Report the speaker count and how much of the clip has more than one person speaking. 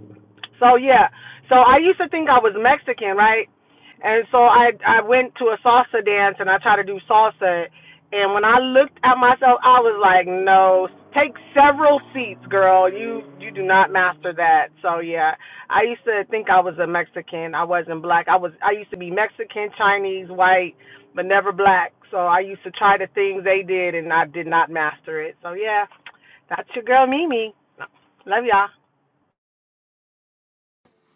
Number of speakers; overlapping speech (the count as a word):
one, no overlap